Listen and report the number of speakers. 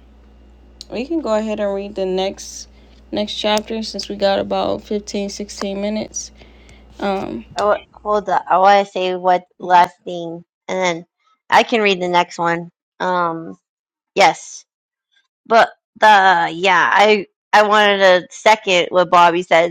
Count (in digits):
2